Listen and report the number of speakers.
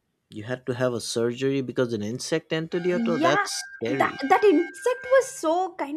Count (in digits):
2